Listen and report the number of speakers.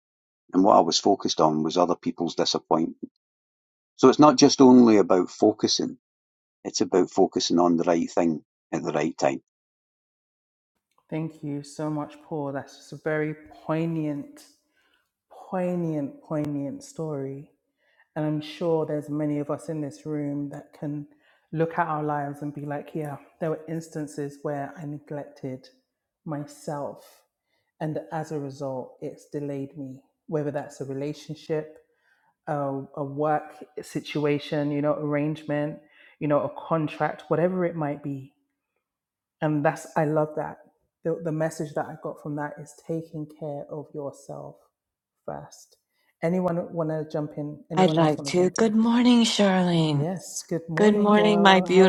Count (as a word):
three